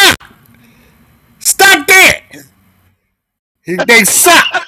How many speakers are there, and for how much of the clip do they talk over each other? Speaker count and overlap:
one, no overlap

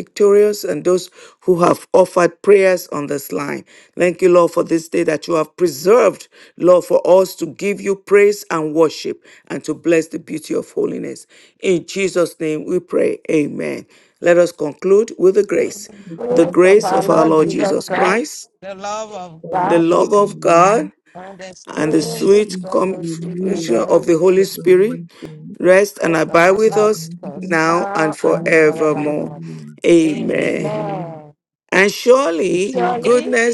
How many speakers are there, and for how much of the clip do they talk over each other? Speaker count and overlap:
three, about 35%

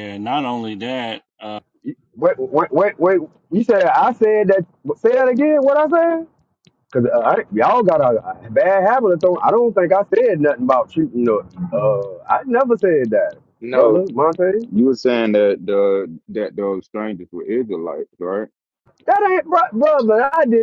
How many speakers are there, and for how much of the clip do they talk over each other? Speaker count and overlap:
three, about 1%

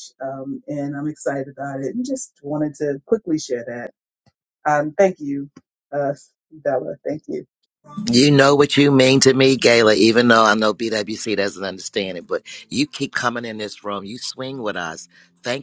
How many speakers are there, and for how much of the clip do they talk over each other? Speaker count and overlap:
two, no overlap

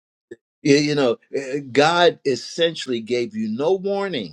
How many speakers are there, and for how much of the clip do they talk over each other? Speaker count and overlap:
one, no overlap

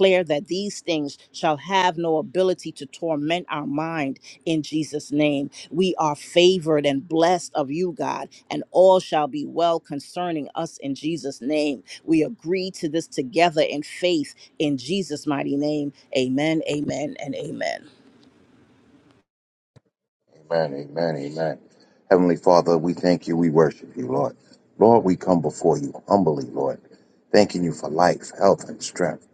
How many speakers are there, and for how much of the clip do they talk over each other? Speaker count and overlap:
two, no overlap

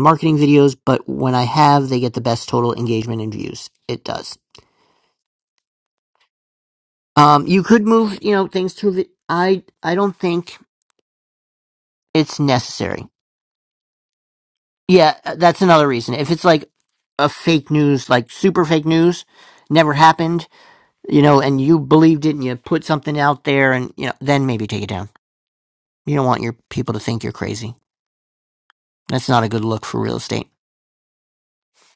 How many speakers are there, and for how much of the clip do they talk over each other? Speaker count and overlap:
one, no overlap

